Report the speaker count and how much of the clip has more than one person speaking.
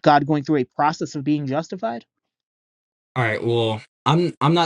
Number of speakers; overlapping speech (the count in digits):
2, no overlap